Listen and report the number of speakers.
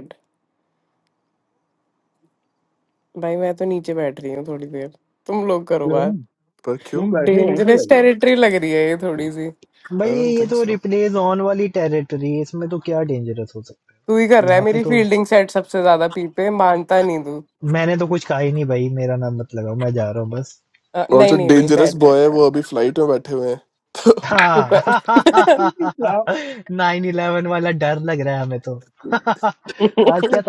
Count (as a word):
four